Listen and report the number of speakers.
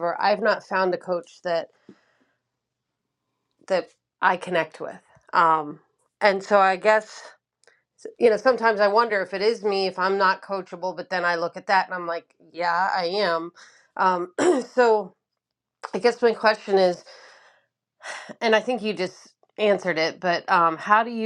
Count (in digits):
1